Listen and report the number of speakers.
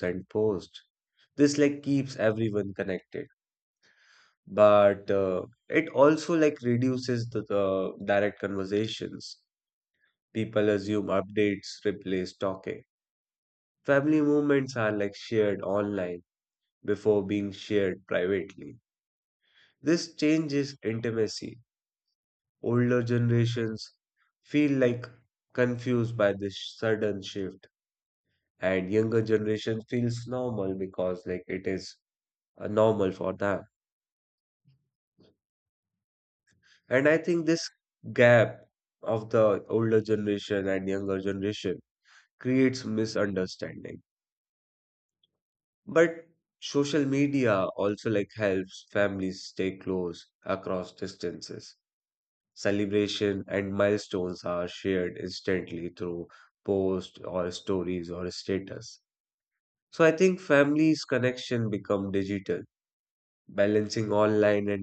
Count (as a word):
one